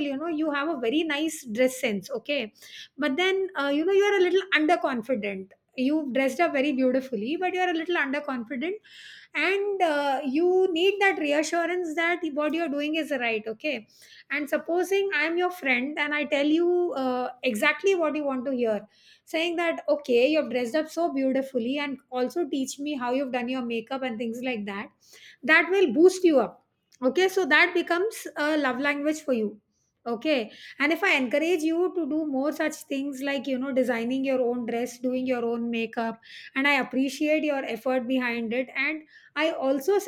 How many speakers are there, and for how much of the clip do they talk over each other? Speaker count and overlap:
1, no overlap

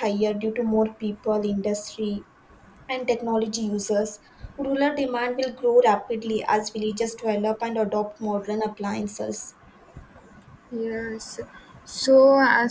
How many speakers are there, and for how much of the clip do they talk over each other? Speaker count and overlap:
2, no overlap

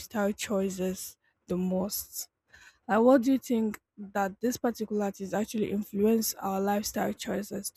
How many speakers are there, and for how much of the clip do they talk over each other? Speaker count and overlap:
1, no overlap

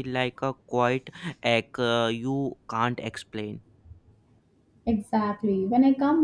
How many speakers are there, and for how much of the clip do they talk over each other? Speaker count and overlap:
2, no overlap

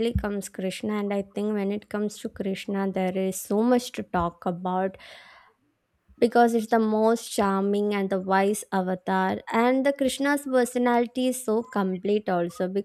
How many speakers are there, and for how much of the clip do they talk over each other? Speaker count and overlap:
1, no overlap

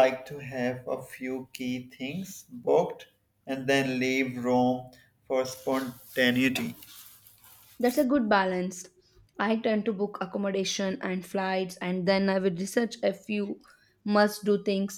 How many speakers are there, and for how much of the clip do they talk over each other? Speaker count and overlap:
2, no overlap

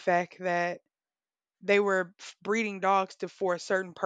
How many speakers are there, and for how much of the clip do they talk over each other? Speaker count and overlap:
1, no overlap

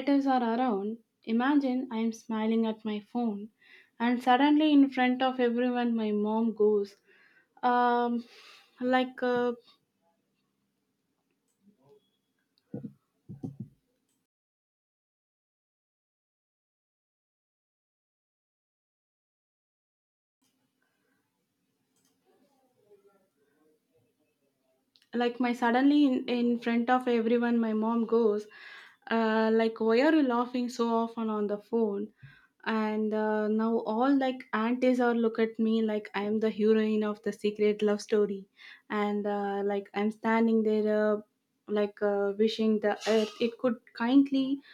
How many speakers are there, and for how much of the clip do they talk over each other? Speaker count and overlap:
1, no overlap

